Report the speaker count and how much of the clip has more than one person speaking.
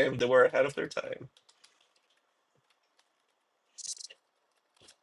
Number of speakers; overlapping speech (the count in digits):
1, no overlap